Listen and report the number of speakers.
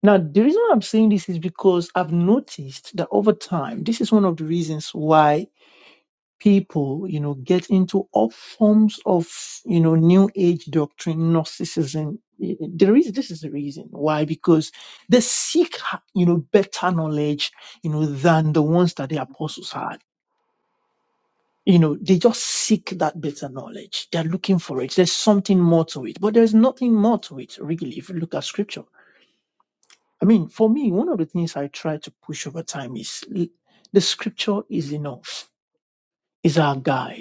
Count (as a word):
one